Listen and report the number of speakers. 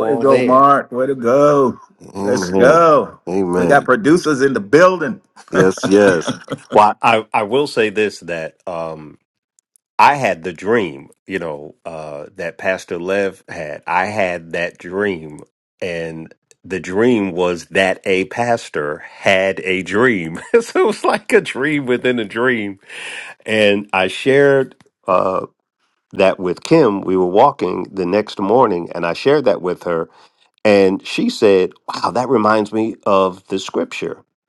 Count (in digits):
2